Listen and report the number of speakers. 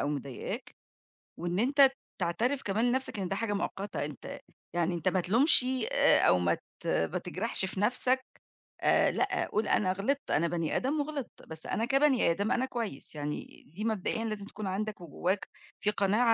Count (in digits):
1